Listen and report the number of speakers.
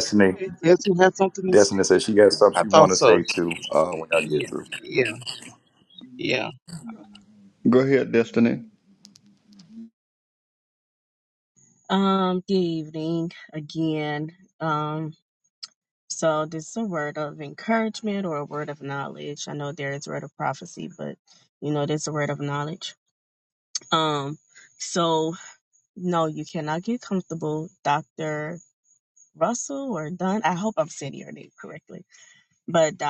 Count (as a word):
four